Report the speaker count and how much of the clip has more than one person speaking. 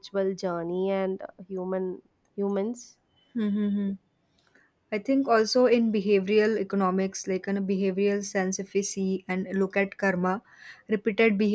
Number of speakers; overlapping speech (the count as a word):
two, no overlap